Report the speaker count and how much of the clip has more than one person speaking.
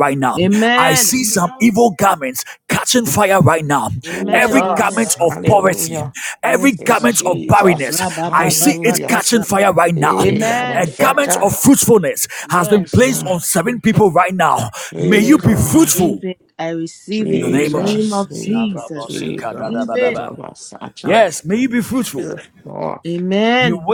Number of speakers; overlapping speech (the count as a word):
three, about 53%